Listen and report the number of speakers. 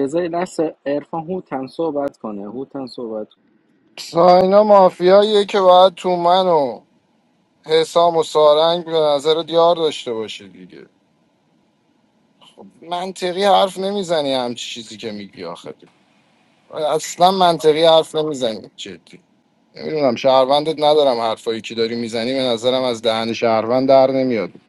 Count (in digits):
2